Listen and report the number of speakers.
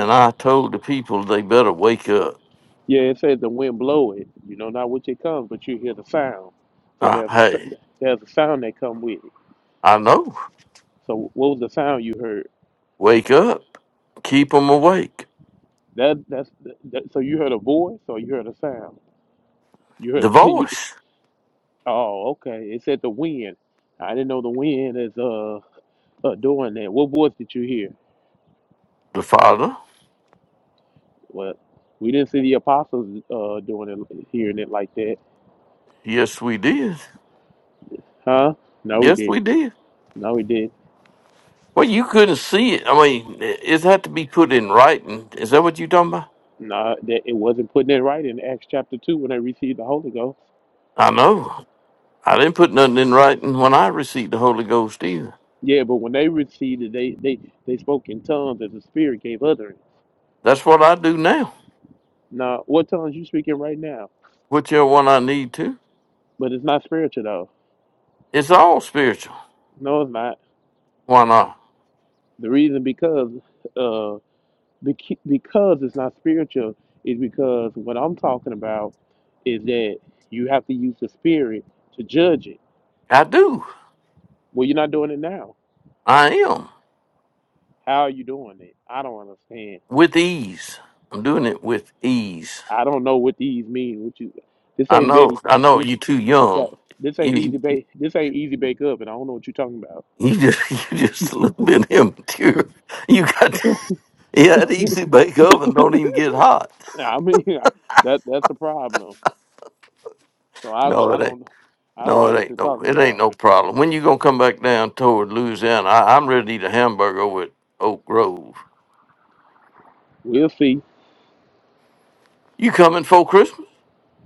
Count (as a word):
two